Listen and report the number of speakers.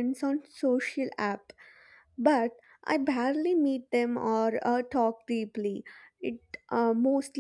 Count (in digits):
1